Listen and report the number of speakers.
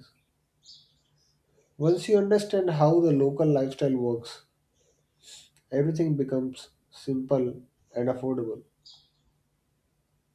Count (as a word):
one